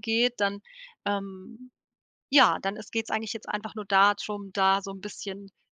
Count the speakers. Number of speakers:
1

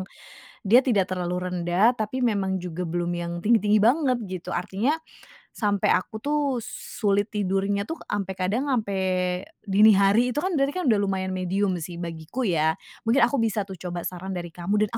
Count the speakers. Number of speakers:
1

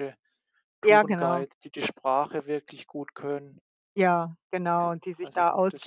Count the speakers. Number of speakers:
2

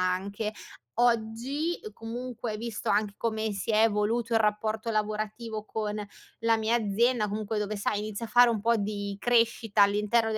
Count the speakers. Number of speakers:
1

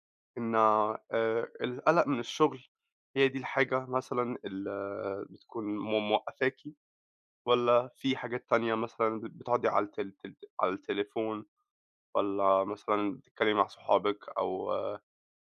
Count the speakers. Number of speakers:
1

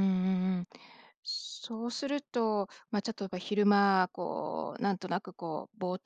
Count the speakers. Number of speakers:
1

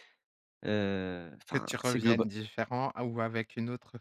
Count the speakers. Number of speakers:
2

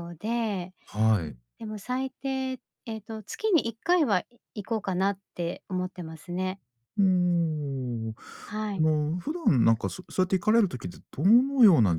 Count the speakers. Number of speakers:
2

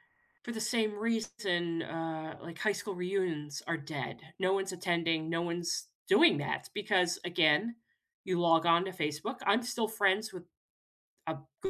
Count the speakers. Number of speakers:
1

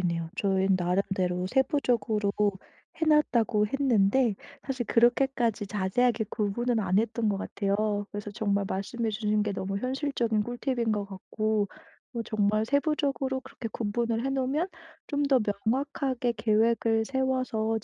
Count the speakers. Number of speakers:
1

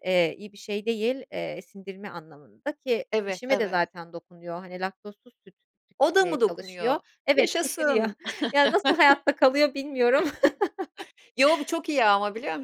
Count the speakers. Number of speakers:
2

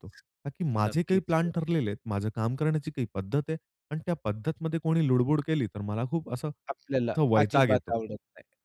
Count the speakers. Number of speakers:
2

